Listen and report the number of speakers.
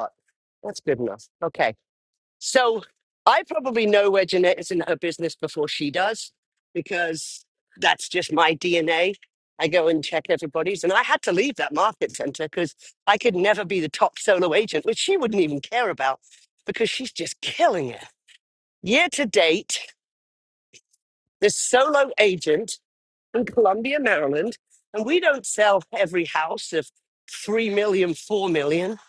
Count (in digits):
1